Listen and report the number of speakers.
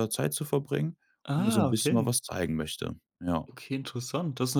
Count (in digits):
2